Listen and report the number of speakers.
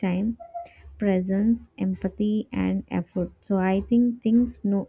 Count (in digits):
1